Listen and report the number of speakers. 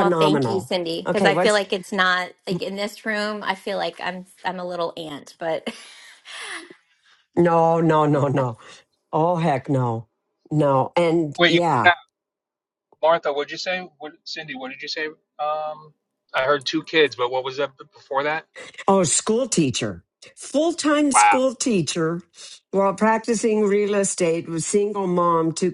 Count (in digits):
3